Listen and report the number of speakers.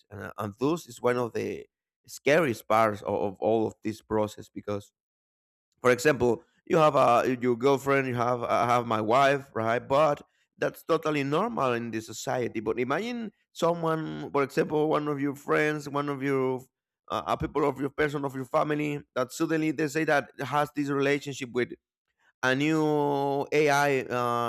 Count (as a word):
one